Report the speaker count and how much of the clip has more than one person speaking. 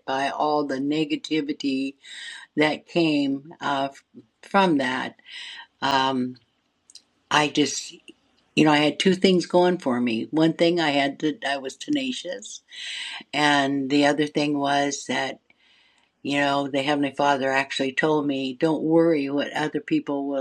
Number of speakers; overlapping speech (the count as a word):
one, no overlap